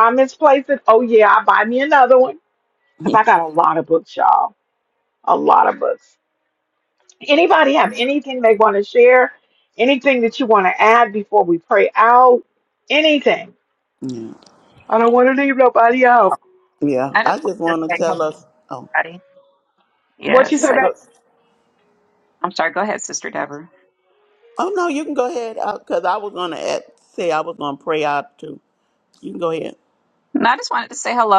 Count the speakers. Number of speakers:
3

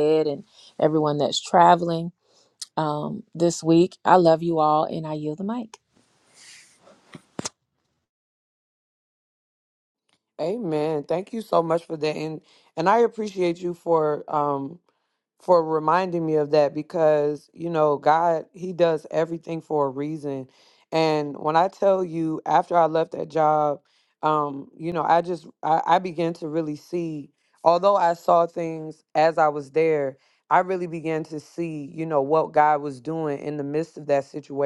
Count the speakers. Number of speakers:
2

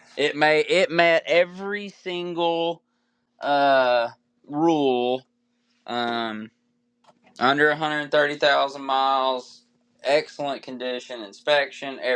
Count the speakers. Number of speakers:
1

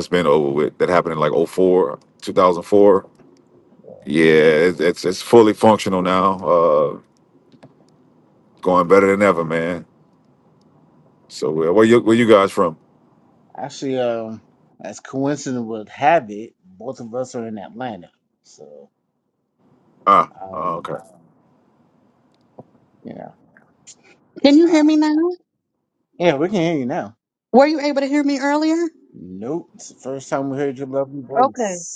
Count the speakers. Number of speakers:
3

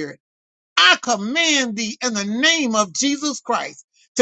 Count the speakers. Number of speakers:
1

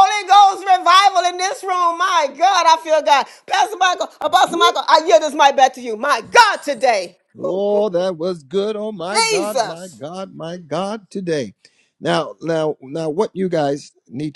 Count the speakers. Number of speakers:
2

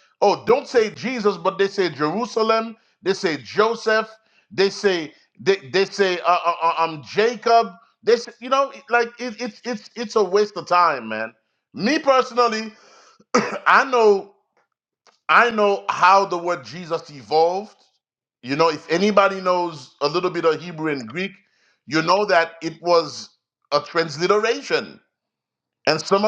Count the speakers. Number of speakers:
1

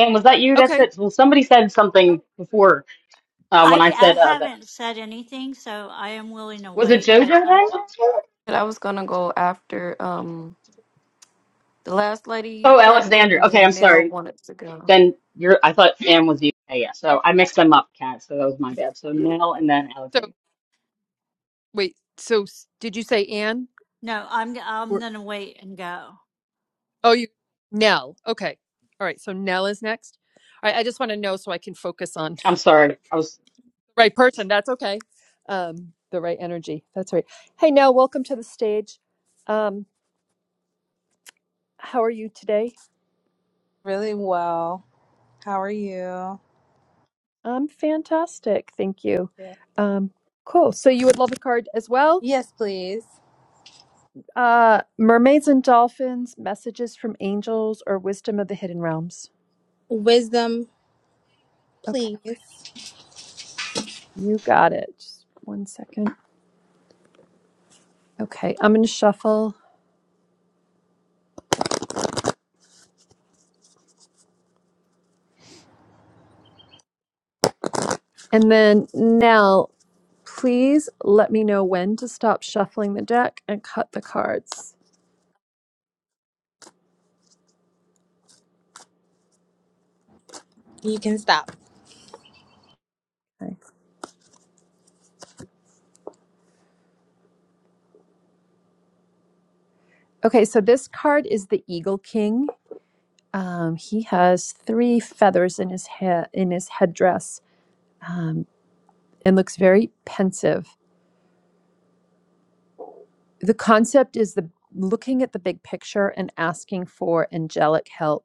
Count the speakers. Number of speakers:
5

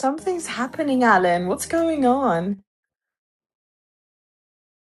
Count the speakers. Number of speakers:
1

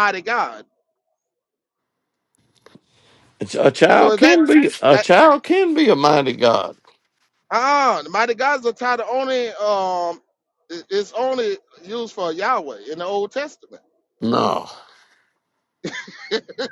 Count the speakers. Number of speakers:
2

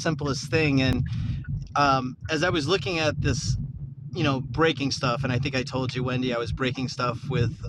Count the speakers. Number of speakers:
1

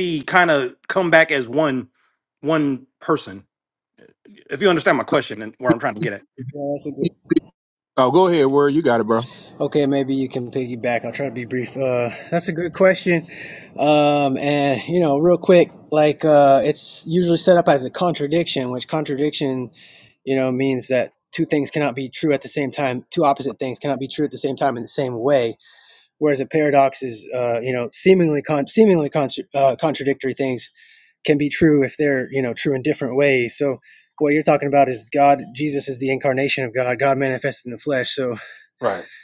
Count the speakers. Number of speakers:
3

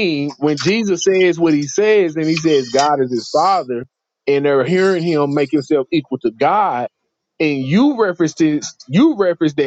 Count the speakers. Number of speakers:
1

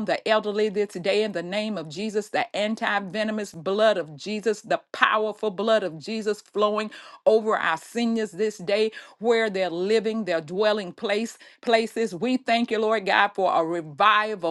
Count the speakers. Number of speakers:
1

